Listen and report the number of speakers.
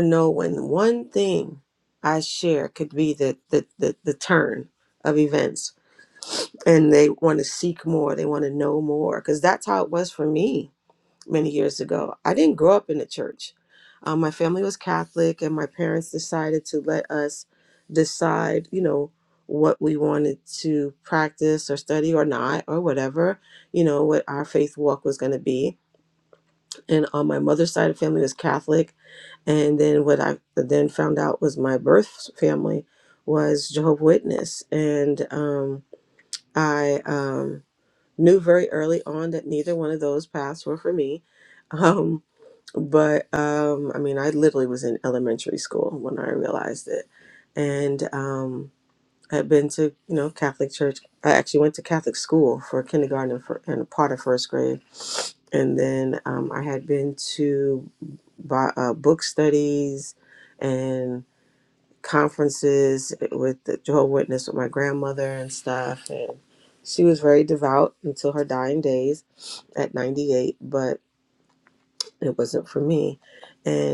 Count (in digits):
1